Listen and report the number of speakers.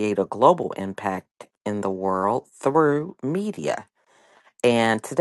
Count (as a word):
one